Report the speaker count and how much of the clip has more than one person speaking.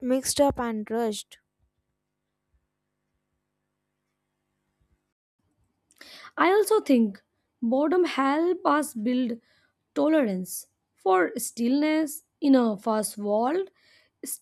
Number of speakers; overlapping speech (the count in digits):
2, no overlap